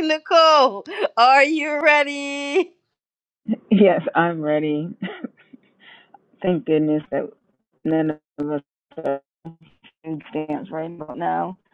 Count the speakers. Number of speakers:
2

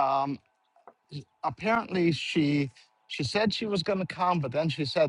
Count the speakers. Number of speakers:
1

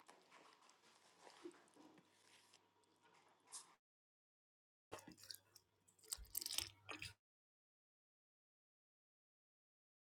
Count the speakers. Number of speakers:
0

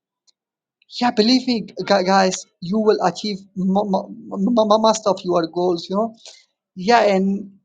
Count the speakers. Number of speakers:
1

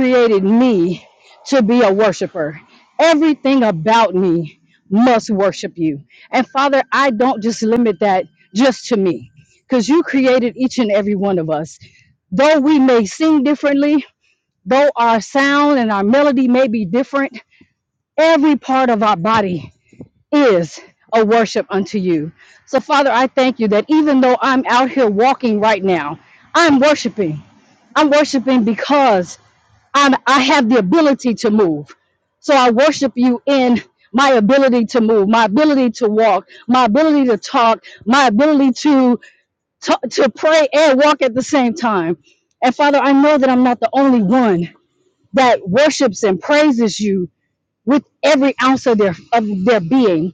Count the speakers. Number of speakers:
1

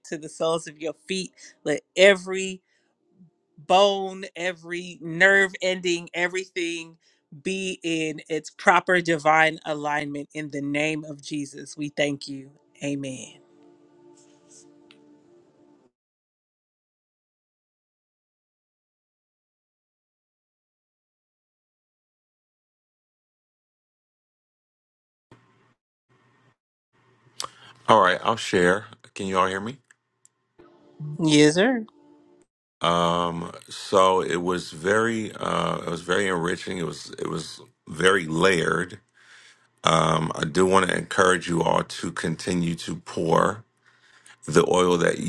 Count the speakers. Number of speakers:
2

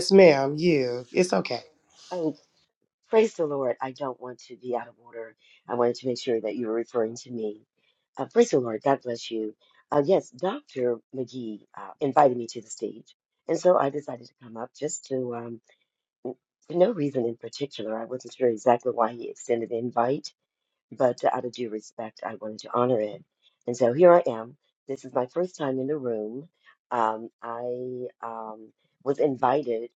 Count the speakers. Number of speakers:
2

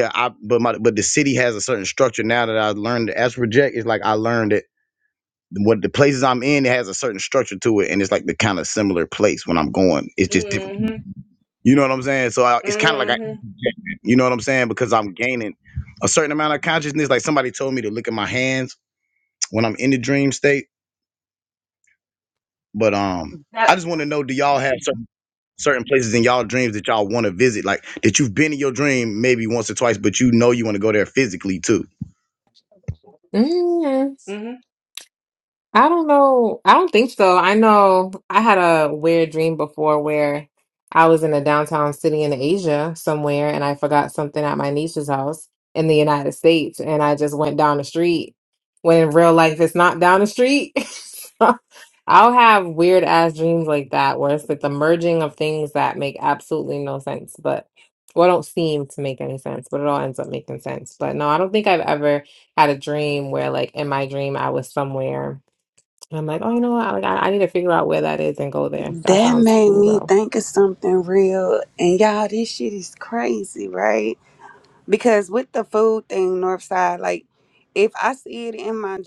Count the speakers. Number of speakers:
4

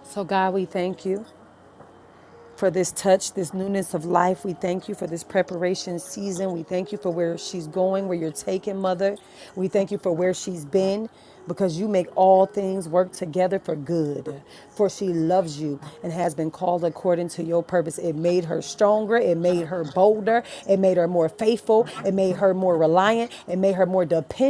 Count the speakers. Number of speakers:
1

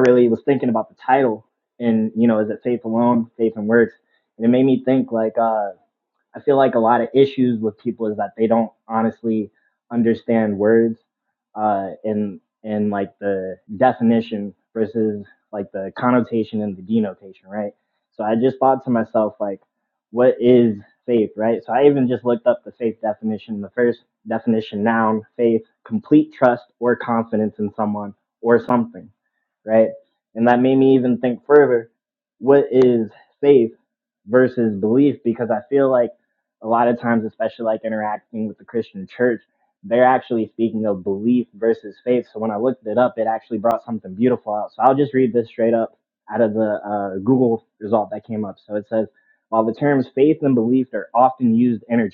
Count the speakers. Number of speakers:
1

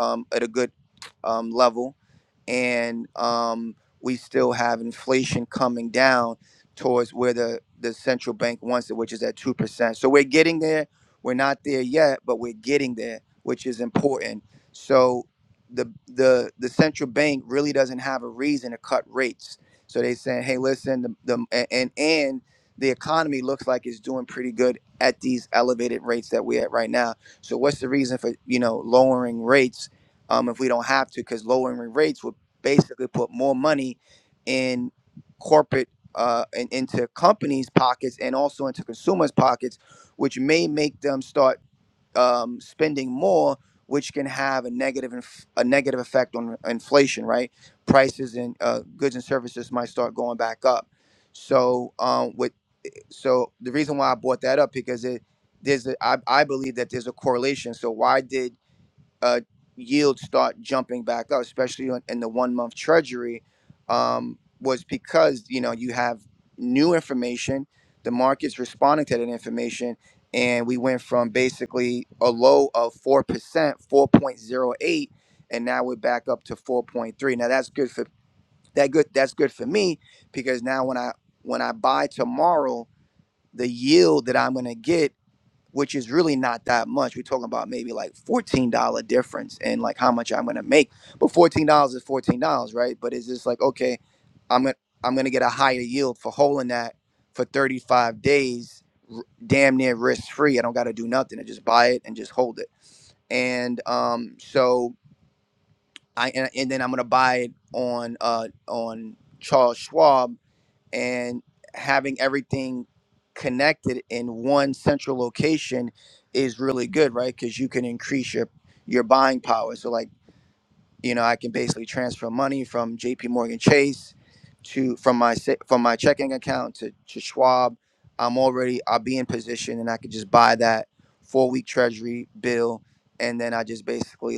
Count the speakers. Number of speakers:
1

